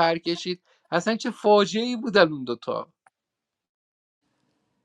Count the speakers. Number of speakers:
one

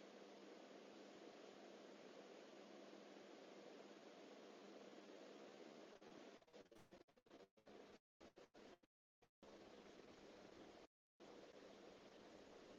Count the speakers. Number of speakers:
zero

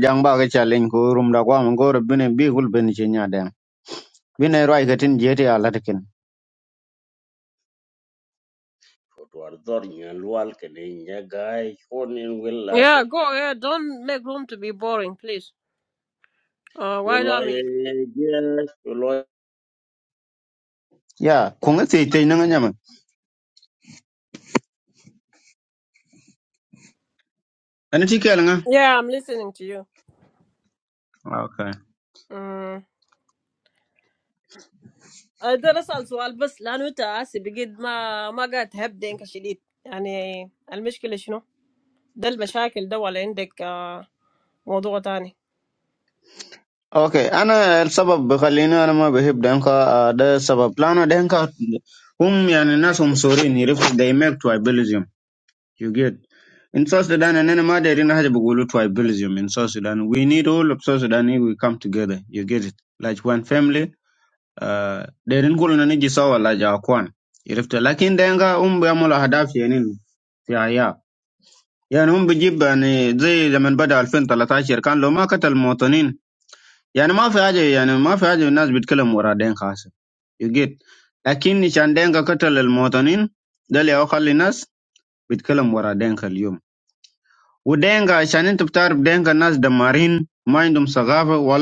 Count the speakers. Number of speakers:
three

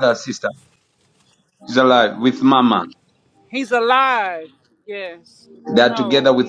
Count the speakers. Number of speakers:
two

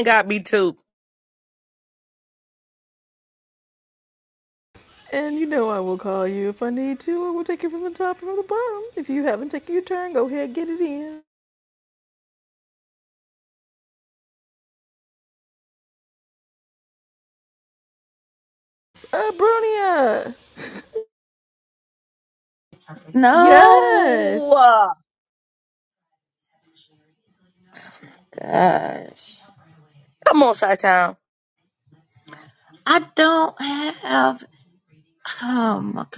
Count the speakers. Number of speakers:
three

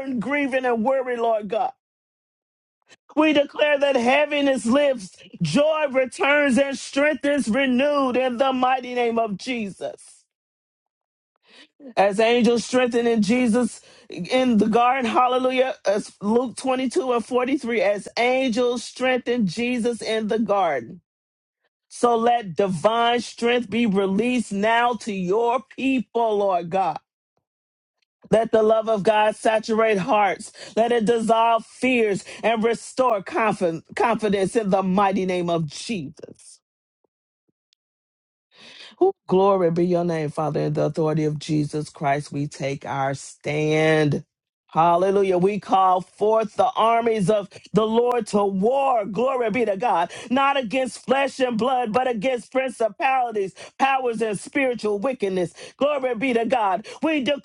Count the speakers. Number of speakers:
one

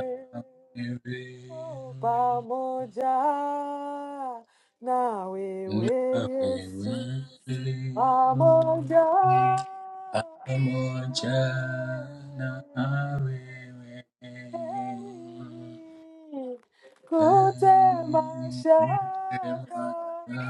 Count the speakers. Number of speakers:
two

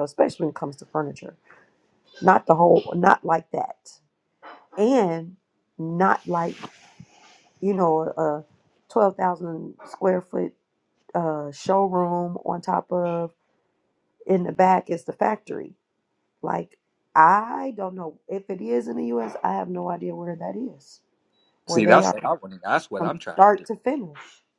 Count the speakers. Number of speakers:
two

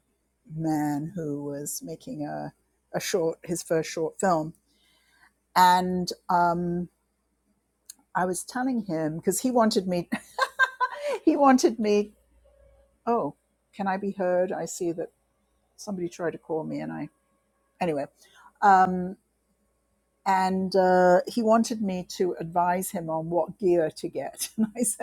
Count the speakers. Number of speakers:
one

